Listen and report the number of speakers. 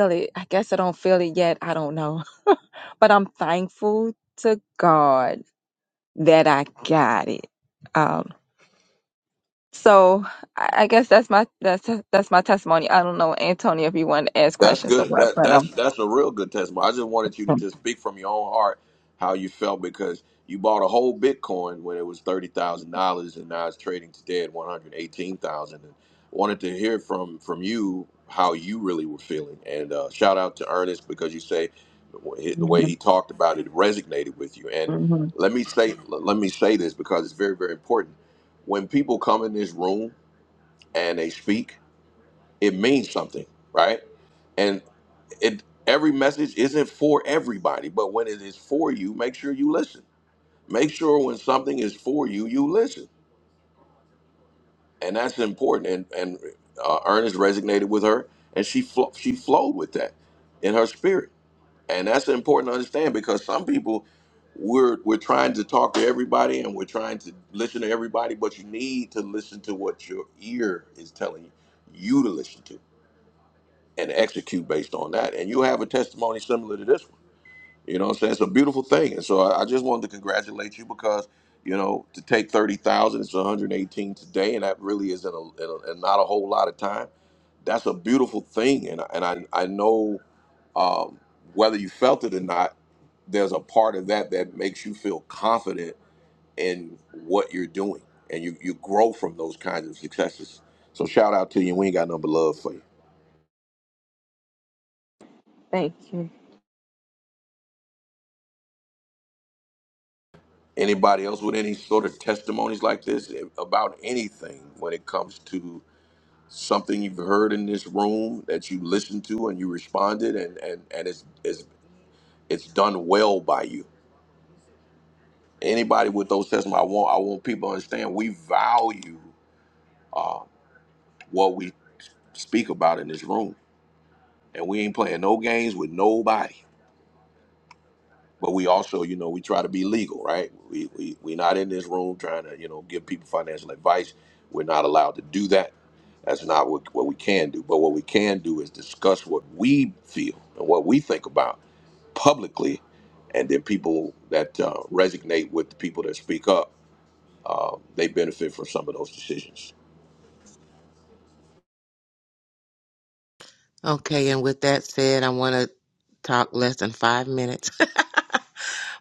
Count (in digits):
3